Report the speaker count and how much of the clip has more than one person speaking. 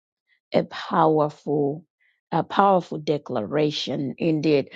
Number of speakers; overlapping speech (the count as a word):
one, no overlap